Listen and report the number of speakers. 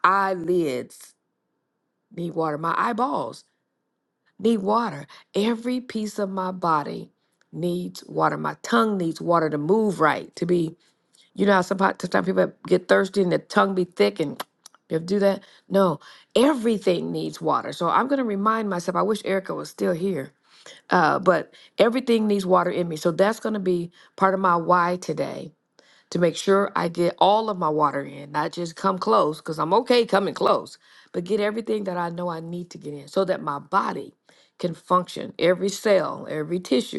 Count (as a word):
one